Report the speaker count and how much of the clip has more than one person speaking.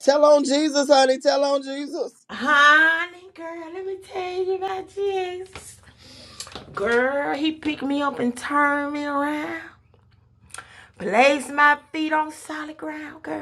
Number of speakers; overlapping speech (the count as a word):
two, no overlap